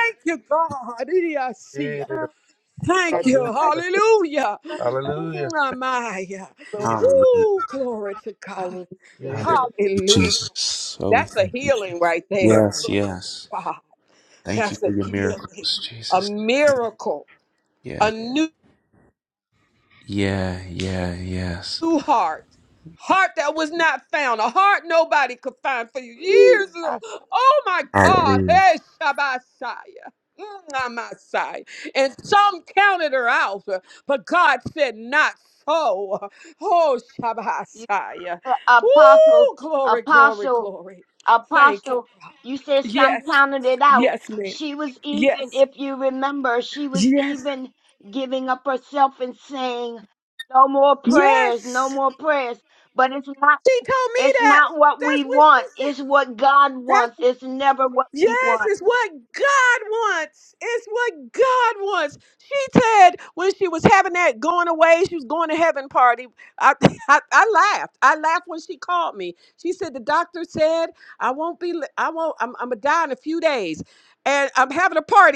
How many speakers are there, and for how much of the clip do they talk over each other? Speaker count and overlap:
4, about 15%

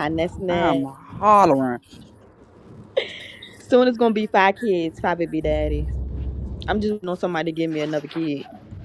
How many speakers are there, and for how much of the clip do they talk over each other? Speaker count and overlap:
2, about 4%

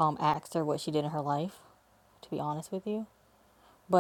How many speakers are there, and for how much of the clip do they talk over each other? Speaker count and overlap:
1, no overlap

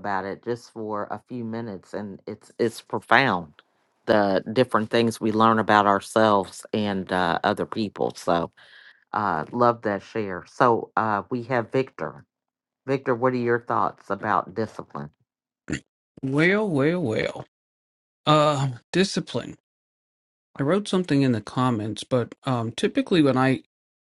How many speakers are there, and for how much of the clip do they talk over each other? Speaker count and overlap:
2, no overlap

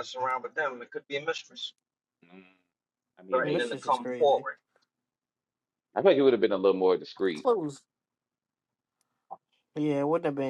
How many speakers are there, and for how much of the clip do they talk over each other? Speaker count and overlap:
3, about 10%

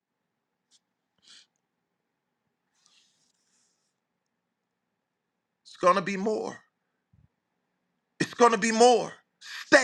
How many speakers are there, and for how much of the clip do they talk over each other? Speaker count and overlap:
1, no overlap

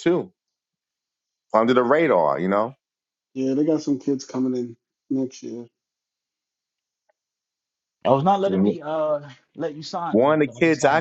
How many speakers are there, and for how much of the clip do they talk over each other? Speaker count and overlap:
3, about 11%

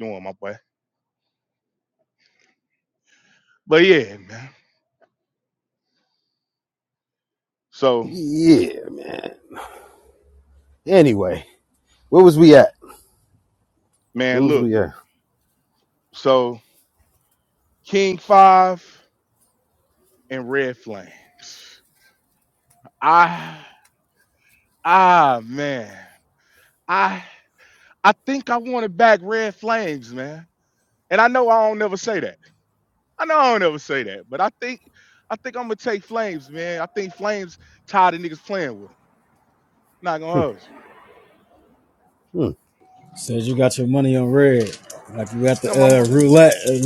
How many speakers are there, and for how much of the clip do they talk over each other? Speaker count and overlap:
3, about 2%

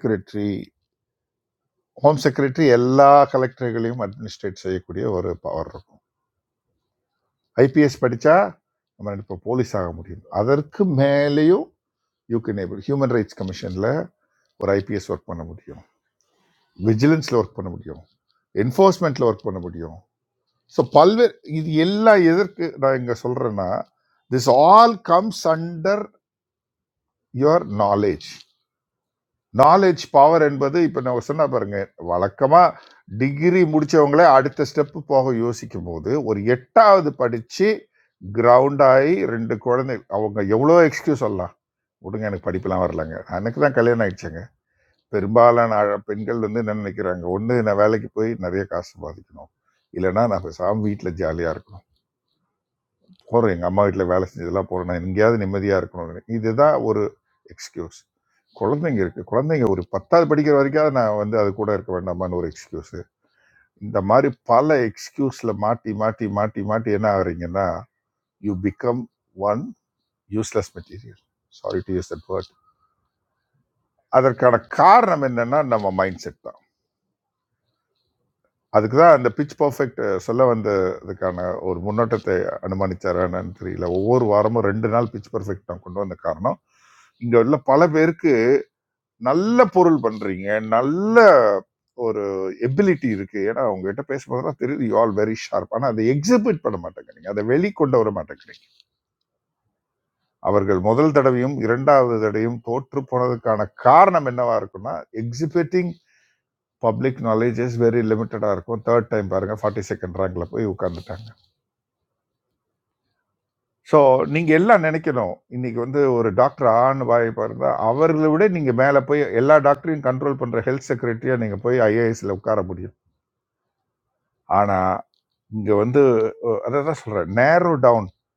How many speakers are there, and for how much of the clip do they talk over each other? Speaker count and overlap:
1, no overlap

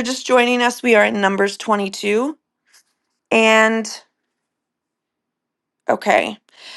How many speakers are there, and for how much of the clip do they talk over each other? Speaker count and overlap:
1, no overlap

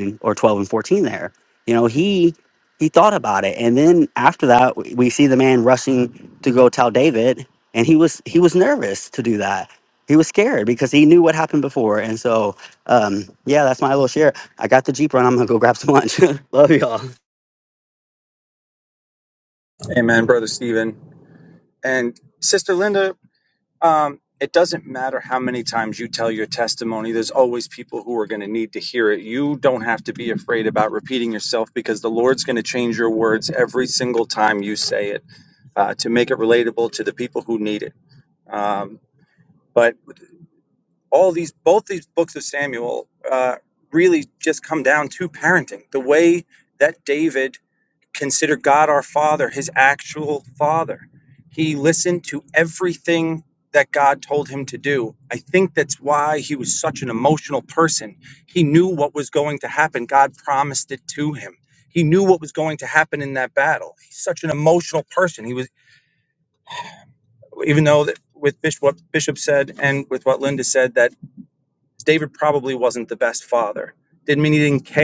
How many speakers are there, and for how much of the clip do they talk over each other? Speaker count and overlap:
2, no overlap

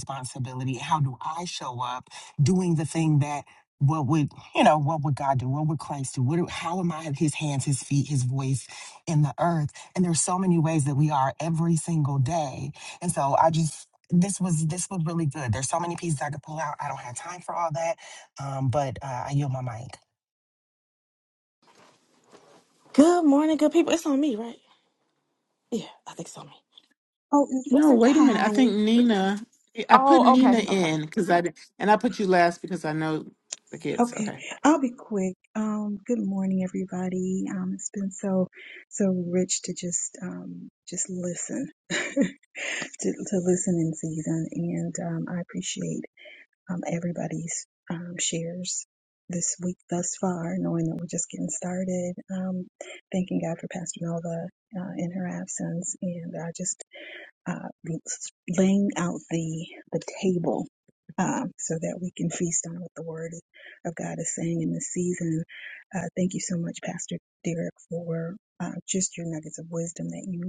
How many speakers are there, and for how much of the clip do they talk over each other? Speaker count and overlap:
4, about 3%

